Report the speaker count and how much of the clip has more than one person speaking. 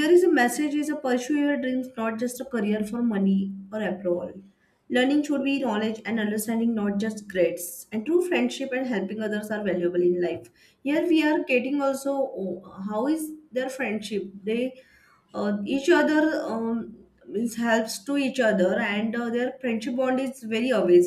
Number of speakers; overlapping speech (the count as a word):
one, no overlap